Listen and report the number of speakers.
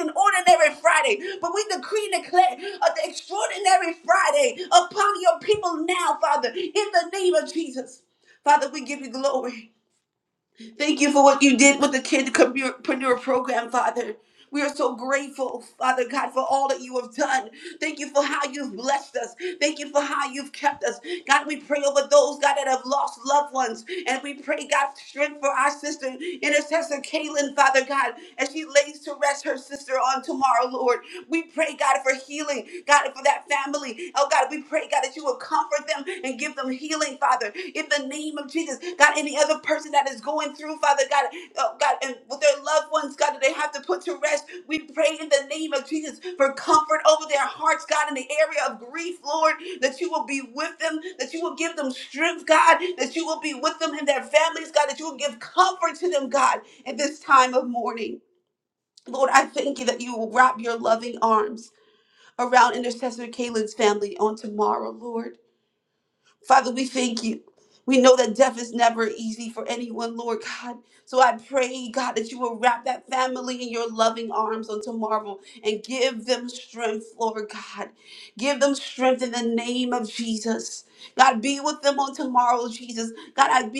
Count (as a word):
one